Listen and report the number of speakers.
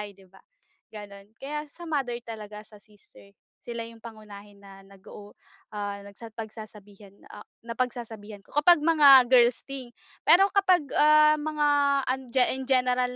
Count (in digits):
1